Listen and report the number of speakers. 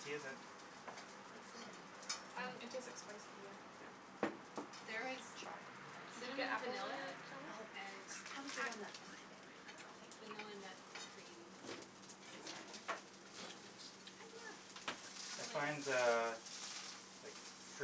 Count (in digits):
4